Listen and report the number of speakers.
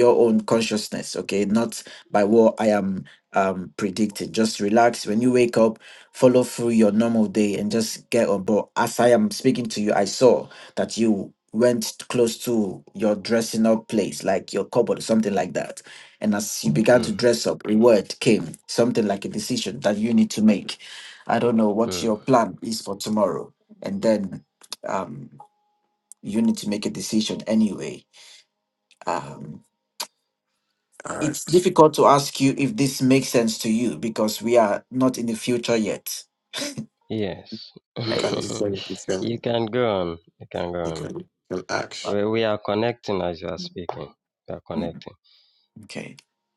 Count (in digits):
3